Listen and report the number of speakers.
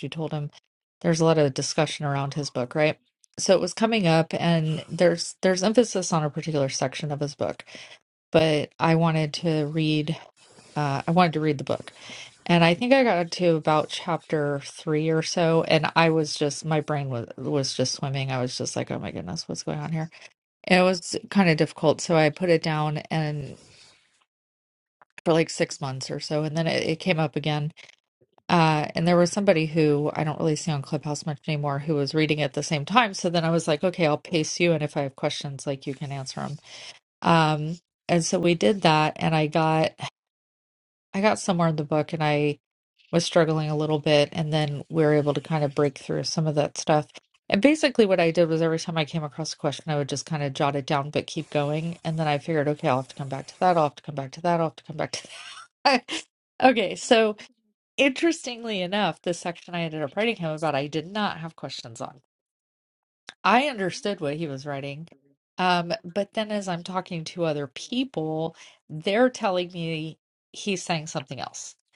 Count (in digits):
1